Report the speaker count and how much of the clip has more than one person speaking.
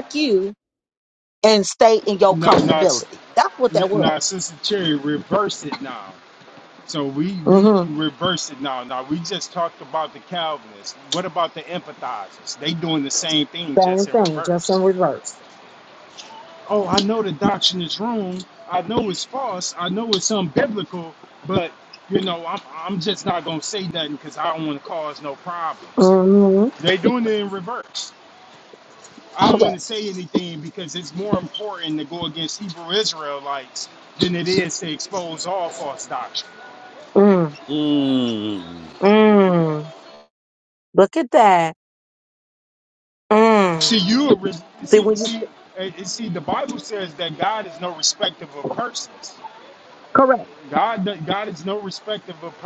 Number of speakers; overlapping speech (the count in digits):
3, about 7%